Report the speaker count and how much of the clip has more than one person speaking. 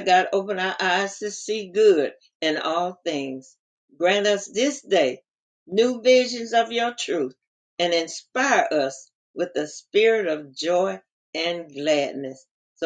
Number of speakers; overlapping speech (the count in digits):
1, no overlap